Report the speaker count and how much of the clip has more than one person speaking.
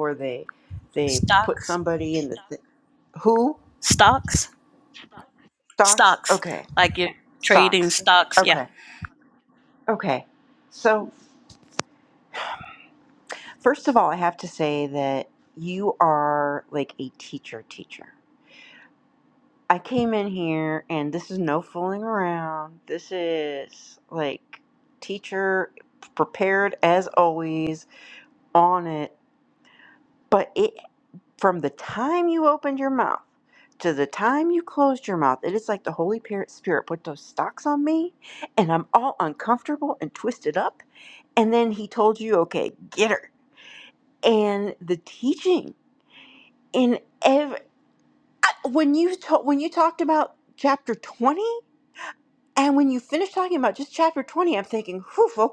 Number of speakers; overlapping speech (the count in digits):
2, about 3%